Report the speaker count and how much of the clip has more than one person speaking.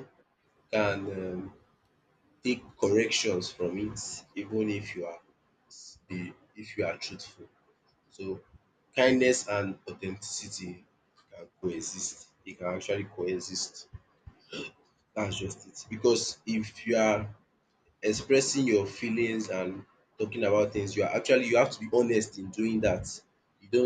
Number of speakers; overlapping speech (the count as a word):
one, no overlap